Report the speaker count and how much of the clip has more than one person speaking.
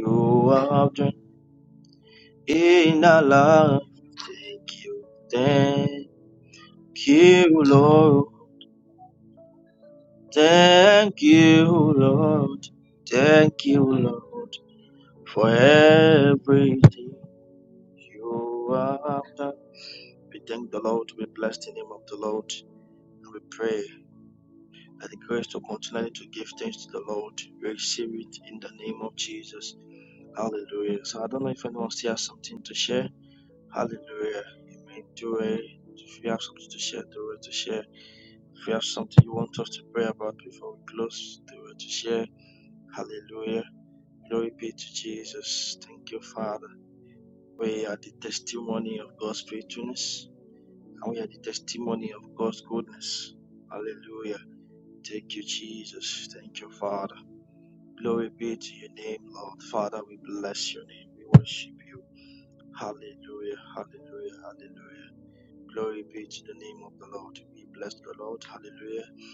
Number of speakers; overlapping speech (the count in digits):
1, no overlap